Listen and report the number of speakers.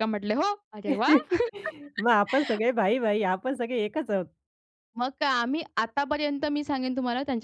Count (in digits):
2